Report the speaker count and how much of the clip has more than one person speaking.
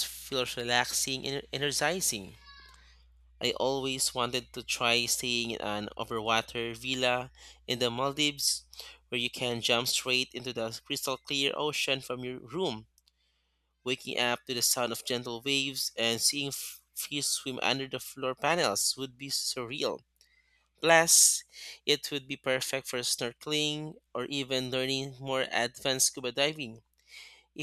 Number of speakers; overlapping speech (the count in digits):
1, no overlap